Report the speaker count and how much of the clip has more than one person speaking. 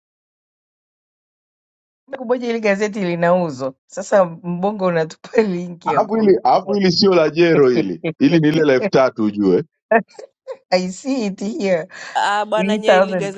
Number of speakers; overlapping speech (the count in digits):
3, about 12%